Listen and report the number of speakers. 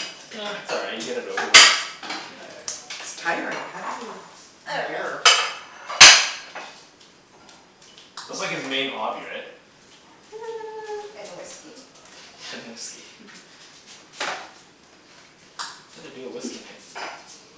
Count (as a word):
four